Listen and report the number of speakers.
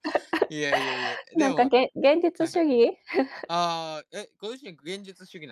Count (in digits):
2